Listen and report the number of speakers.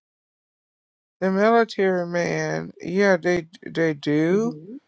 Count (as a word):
one